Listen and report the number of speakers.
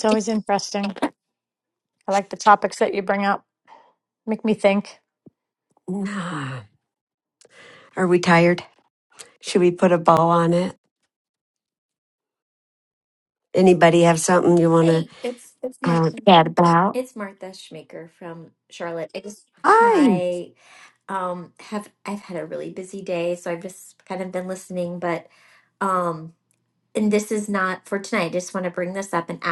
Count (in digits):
3